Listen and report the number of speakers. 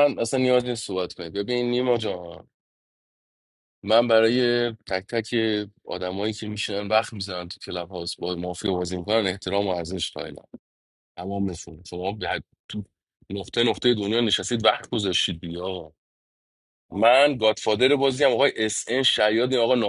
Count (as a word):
one